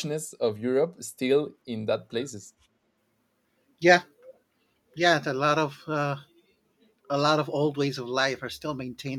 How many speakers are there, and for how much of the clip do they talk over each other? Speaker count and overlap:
2, no overlap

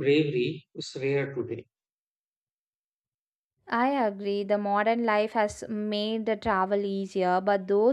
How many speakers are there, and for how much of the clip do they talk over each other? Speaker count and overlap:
2, no overlap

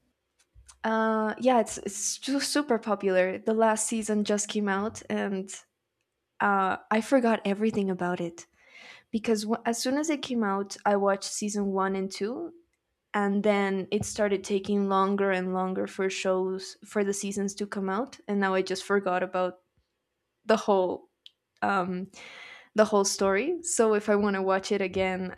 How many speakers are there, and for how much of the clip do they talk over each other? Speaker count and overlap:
1, no overlap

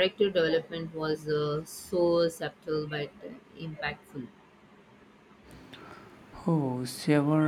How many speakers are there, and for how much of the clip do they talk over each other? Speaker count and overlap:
2, no overlap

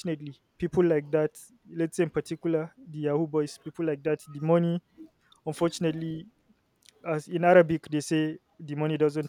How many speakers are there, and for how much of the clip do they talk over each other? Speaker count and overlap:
1, no overlap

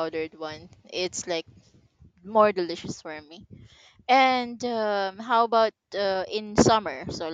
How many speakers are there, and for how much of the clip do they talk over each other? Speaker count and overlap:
1, no overlap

